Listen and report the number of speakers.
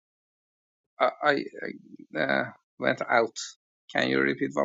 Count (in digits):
1